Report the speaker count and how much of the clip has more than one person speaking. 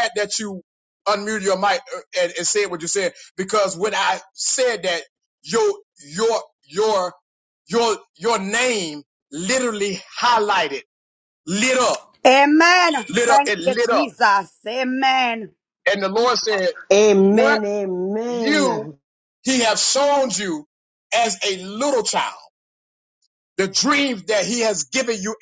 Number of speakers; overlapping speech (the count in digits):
3, about 7%